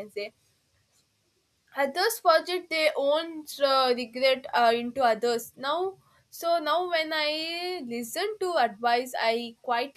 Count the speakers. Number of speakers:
one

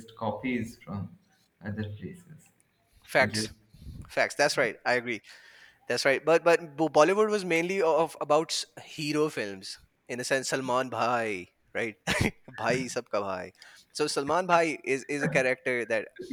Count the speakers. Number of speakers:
two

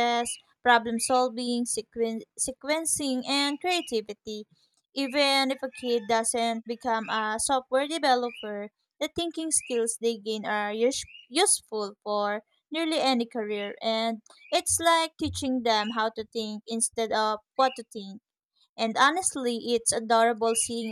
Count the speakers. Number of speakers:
one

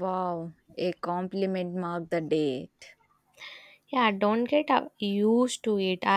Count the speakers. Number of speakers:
two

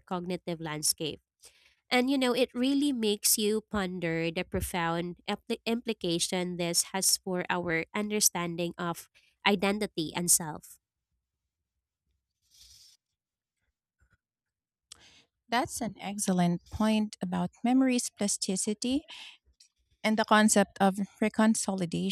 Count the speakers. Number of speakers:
two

